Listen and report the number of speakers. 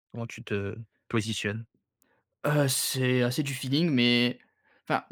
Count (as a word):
two